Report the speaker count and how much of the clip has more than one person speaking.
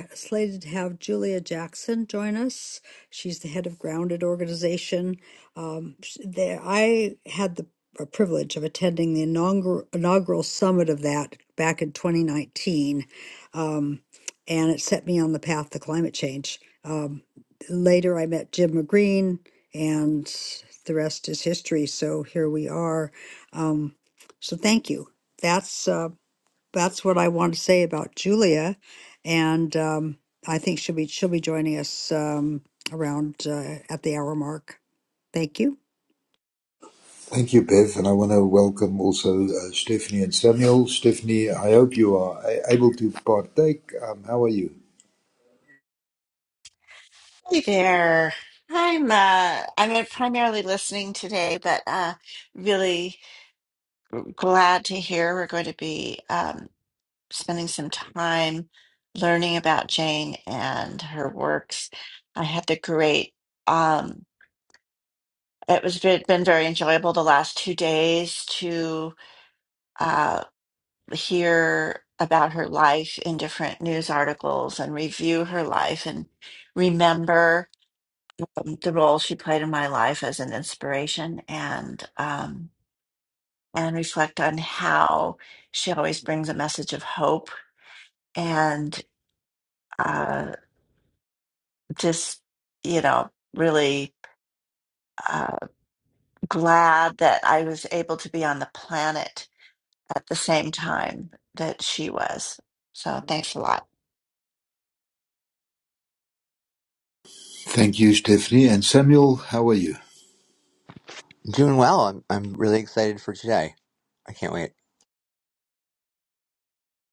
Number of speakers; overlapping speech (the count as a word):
four, no overlap